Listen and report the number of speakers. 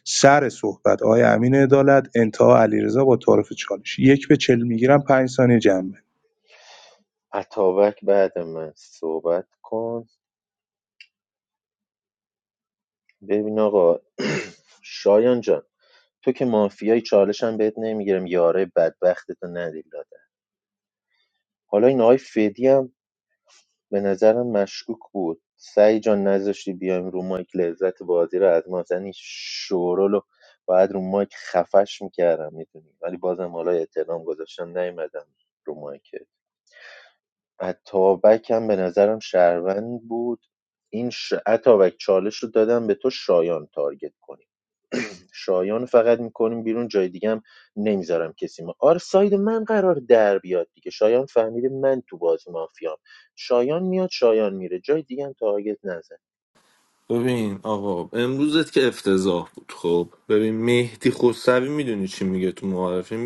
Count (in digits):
3